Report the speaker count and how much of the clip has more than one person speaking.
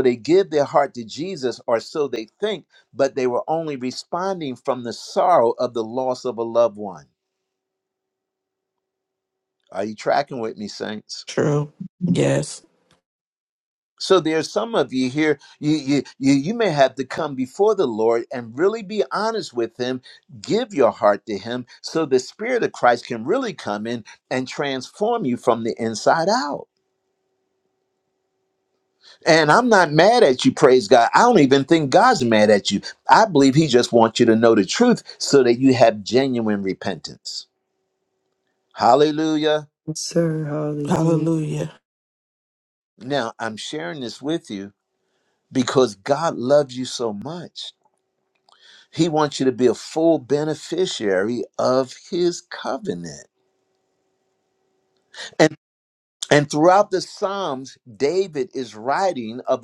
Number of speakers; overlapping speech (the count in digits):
3, about 1%